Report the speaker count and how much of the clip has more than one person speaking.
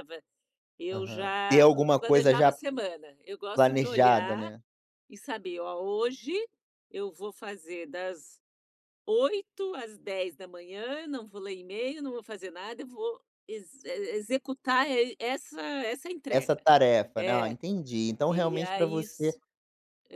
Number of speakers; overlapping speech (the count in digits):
2, about 20%